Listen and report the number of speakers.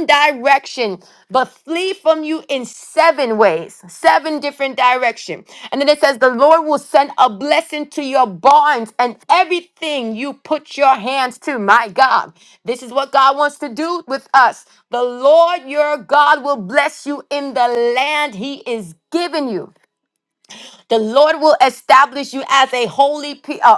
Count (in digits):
1